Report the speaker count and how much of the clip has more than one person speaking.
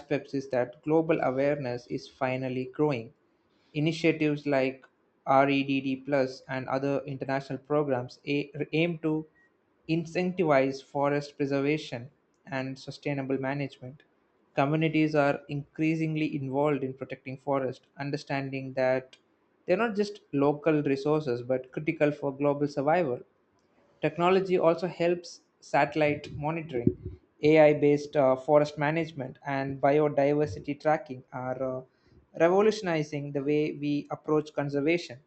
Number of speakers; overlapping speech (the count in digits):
1, no overlap